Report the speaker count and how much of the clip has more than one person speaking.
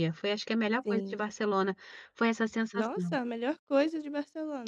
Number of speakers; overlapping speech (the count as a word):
two, about 15%